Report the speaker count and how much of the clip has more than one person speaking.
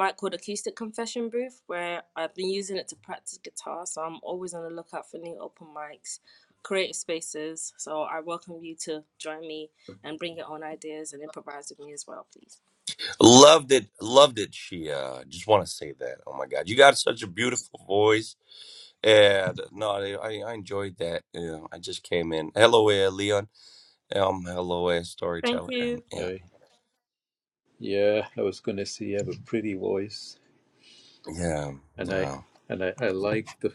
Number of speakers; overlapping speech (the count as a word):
three, about 3%